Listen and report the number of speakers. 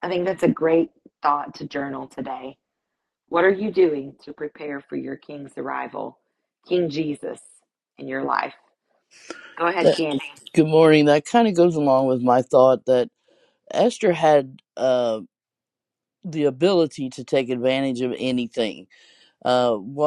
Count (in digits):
2